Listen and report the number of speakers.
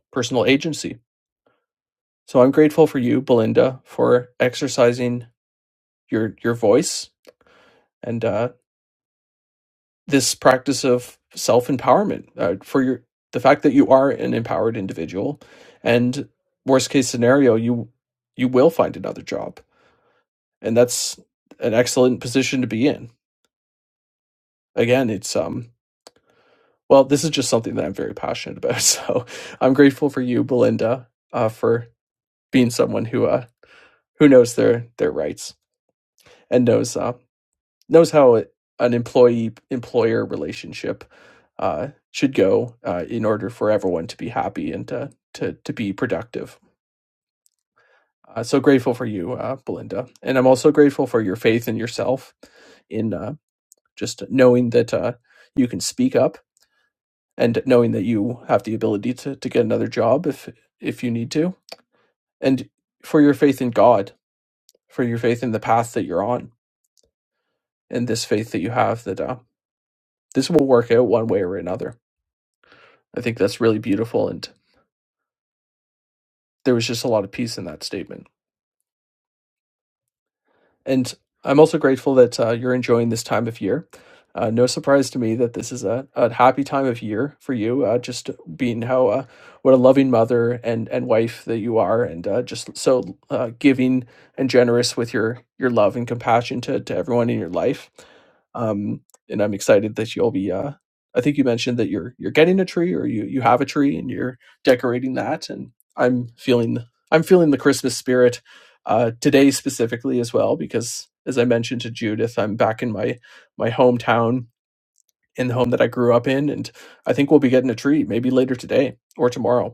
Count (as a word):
one